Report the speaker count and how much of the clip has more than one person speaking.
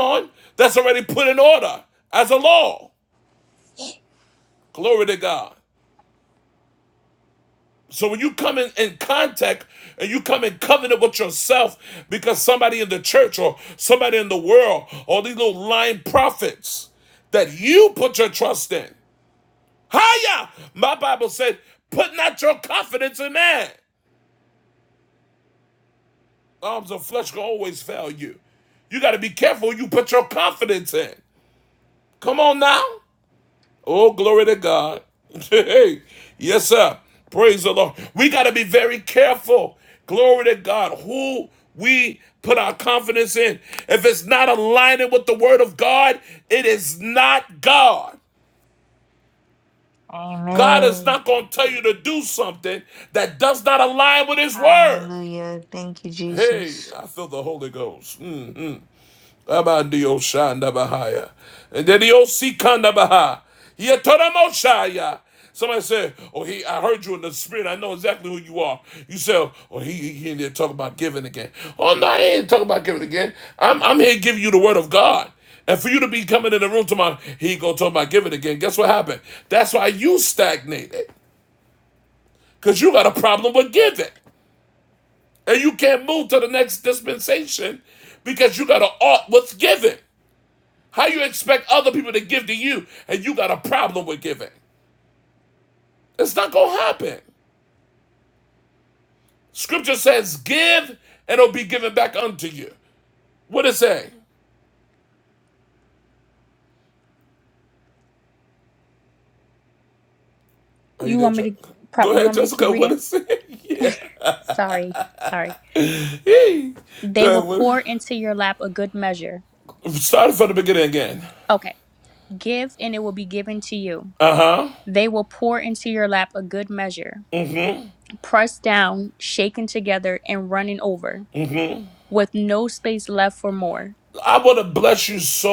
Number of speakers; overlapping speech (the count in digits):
3, about 3%